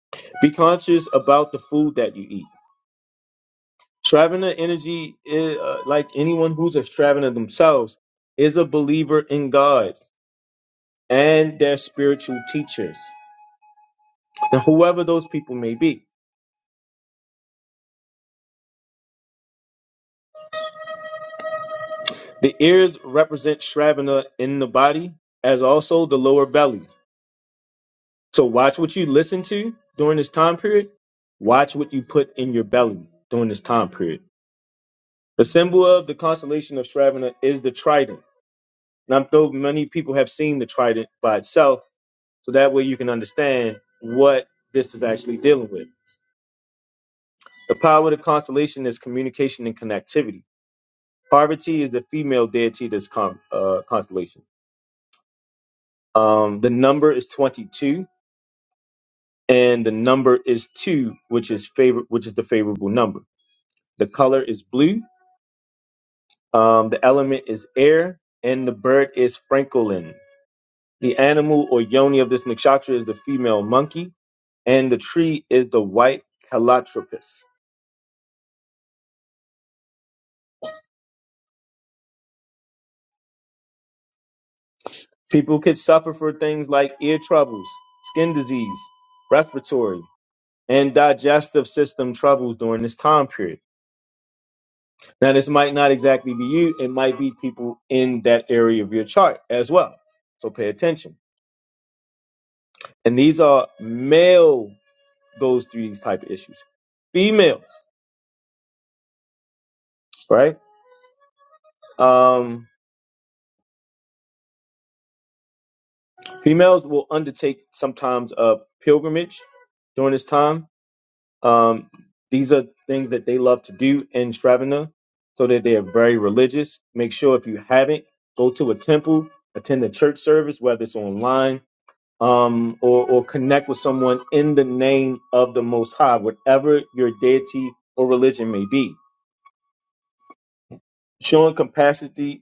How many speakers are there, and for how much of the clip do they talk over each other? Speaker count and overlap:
one, no overlap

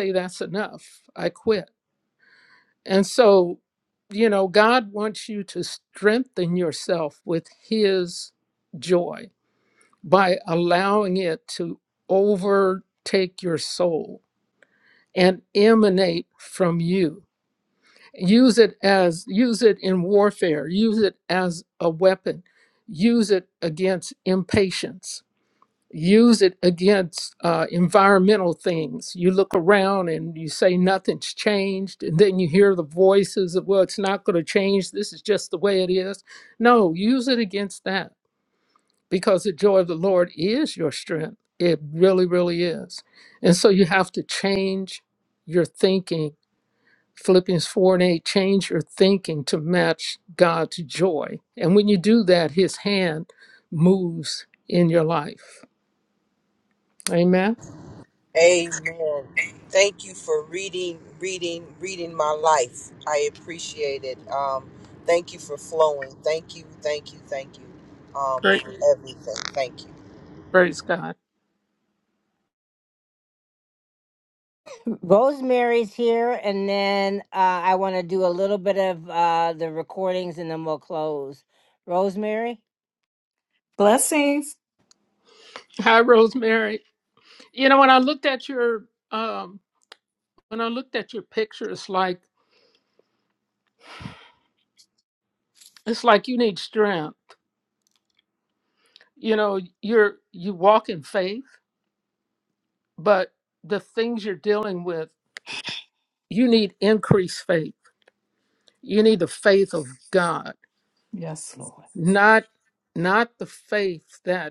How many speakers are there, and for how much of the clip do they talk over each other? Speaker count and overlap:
four, under 1%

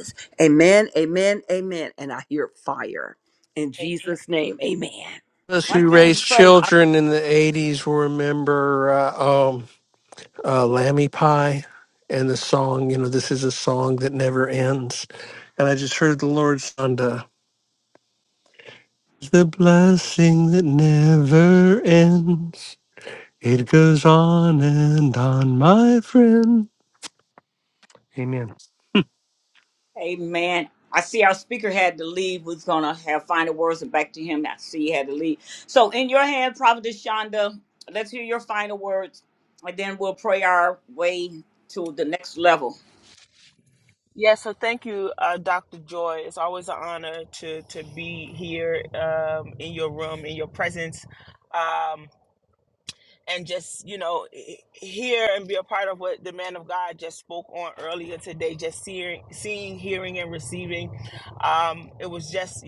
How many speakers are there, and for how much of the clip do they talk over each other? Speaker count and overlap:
four, about 2%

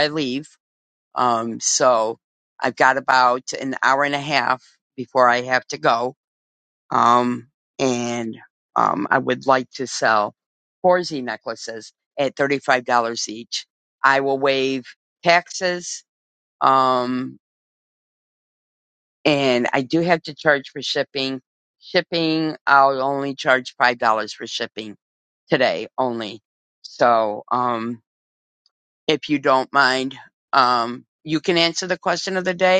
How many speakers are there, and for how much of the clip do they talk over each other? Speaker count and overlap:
one, no overlap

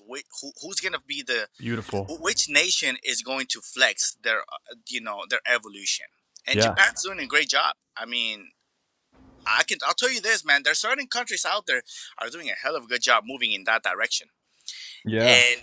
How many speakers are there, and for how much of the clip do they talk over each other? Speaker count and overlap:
two, about 3%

